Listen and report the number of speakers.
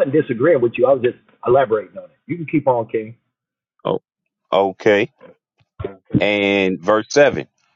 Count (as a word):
two